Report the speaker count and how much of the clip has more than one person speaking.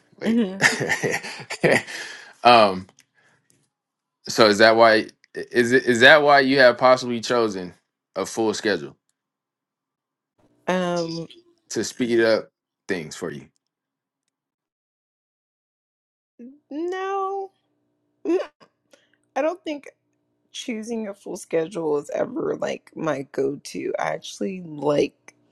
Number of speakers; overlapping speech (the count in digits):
2, under 1%